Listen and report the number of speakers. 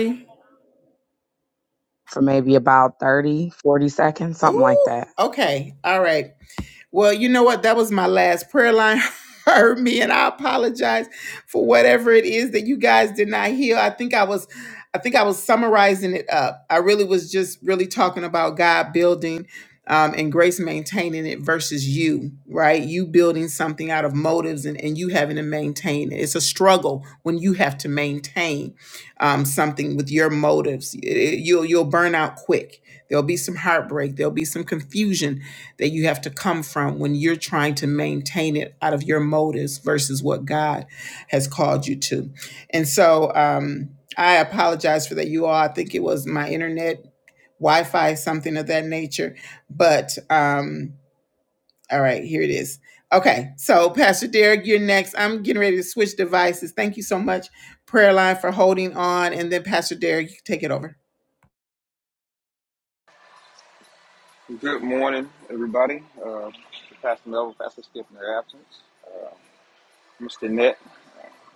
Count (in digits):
3